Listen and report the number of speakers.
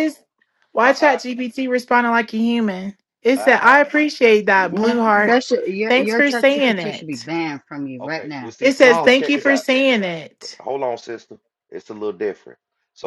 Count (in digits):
3